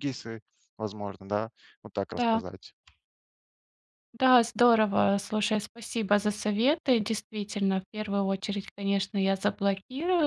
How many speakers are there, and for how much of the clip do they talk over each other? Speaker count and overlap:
2, about 3%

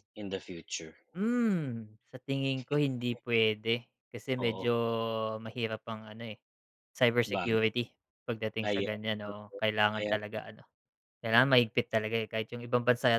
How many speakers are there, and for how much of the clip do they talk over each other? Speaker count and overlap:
2, about 13%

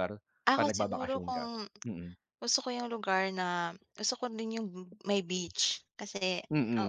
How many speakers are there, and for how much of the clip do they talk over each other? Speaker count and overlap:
2, about 15%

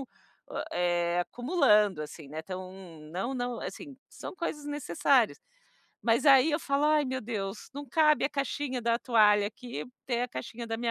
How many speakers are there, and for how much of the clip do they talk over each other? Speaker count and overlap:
1, no overlap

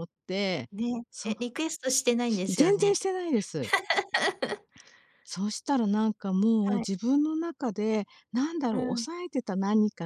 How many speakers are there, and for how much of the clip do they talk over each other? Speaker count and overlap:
2, about 12%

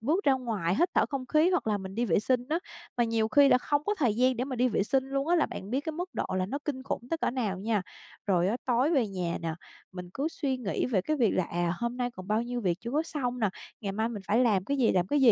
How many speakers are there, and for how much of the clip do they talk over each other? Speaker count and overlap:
1, no overlap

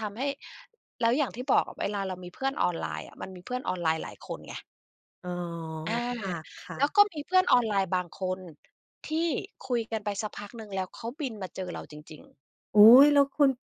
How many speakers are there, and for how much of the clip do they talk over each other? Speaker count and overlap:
2, about 1%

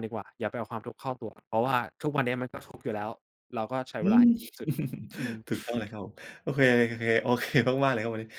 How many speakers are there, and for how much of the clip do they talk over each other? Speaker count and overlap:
2, about 4%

